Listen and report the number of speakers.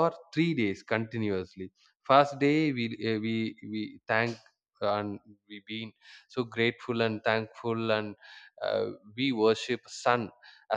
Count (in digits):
1